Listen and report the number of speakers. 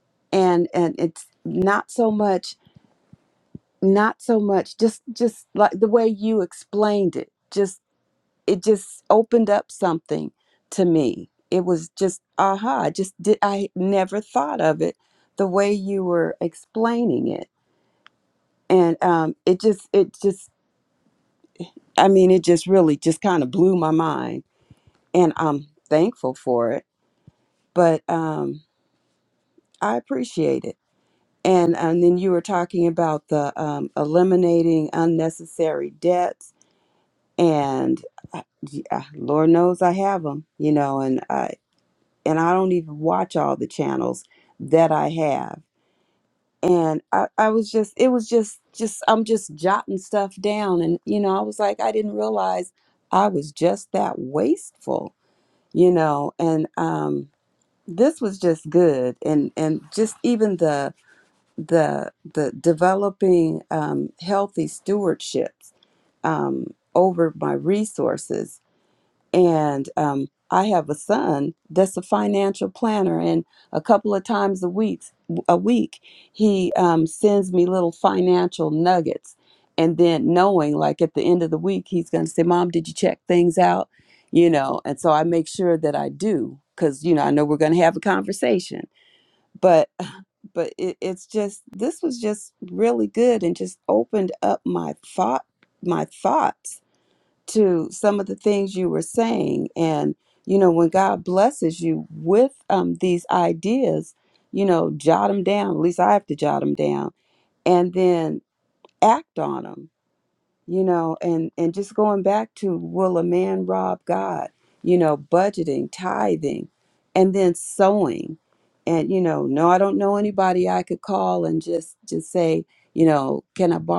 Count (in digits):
1